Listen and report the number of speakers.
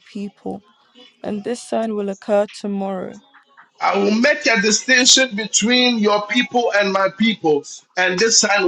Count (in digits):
2